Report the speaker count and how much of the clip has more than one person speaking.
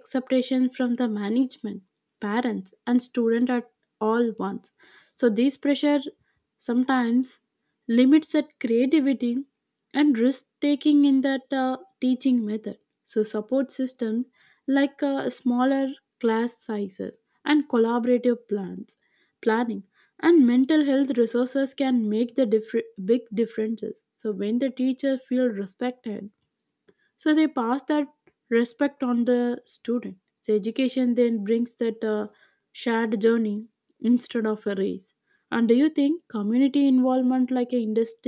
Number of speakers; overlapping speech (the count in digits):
1, no overlap